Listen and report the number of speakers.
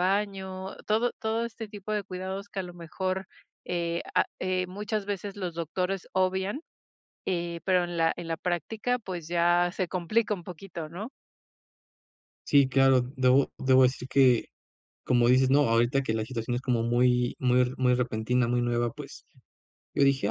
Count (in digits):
2